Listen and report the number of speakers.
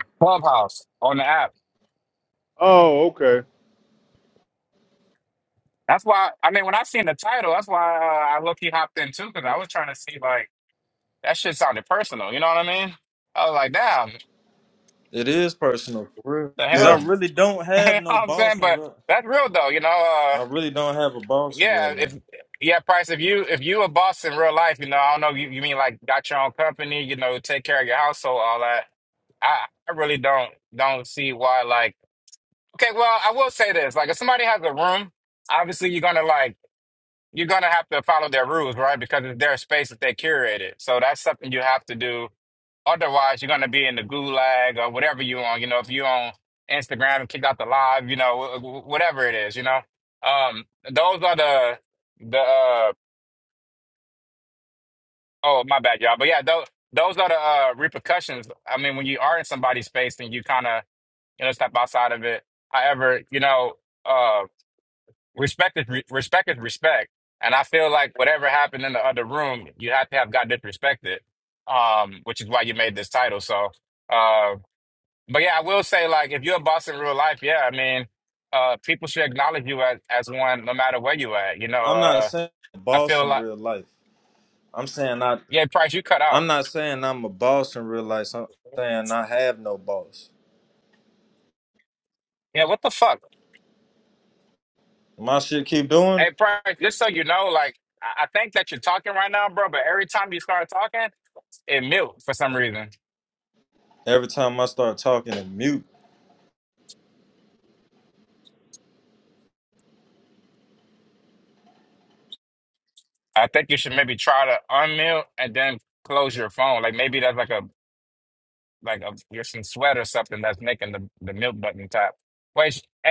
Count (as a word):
three